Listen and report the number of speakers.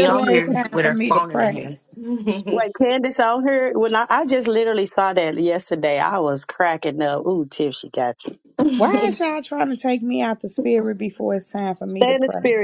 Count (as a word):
three